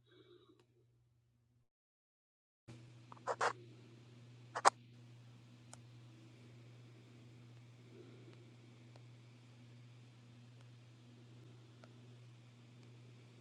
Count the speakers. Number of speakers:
0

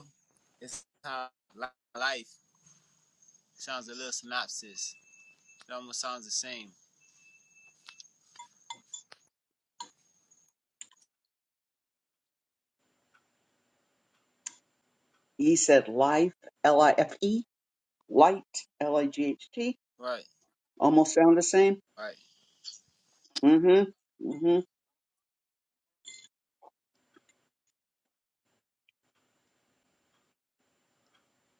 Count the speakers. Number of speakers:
2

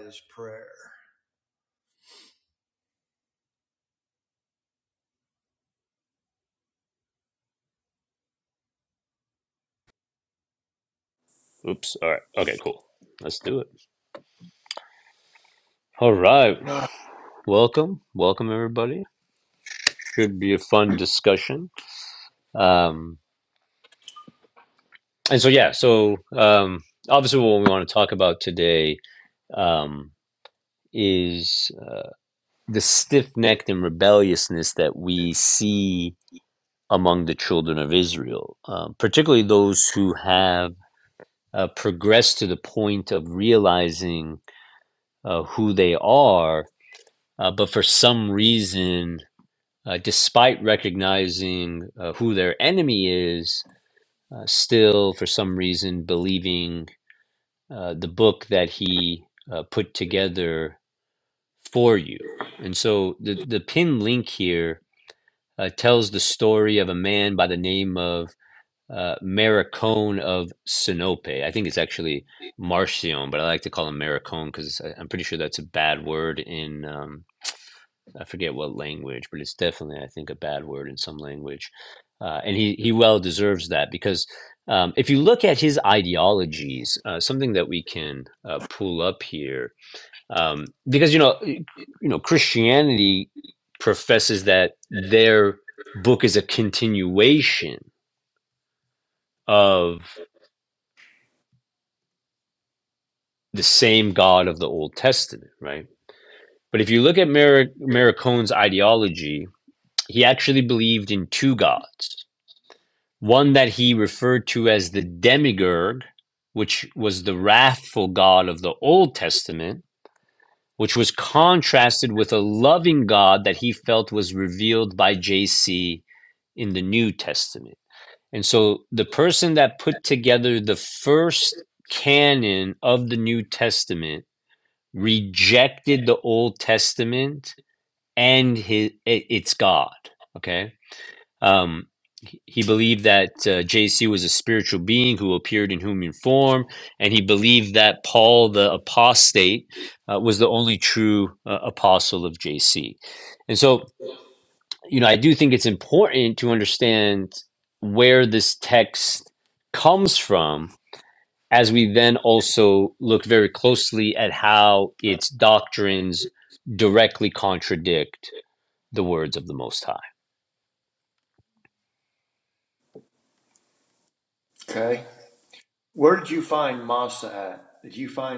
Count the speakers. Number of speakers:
2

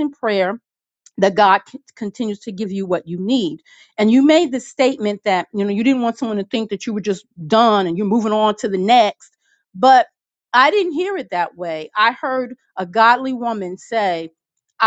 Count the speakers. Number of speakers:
1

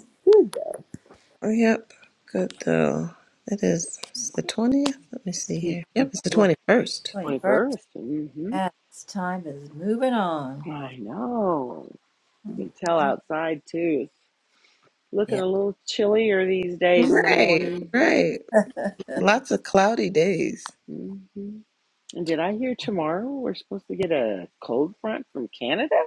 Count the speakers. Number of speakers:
3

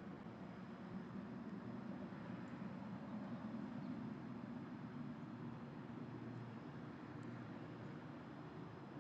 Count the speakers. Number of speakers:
0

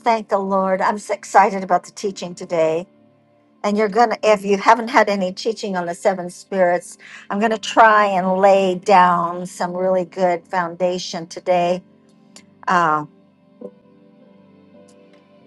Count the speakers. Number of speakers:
1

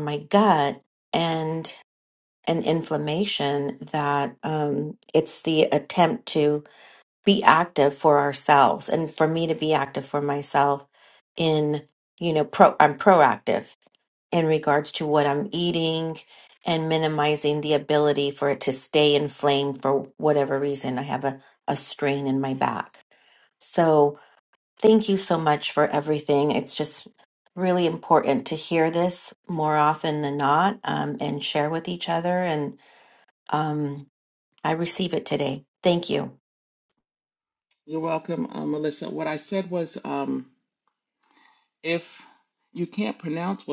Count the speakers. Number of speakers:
2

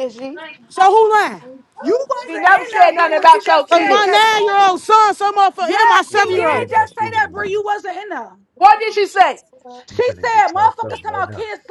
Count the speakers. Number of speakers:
3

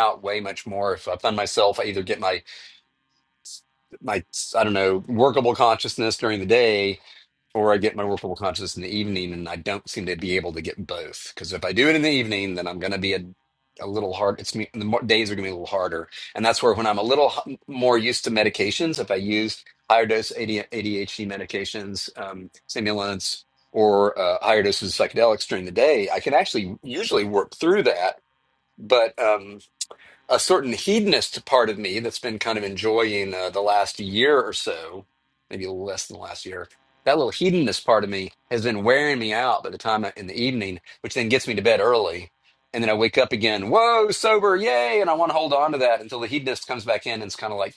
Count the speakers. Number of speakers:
1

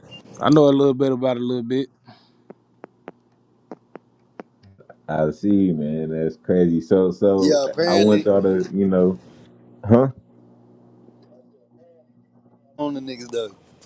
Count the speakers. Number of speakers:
3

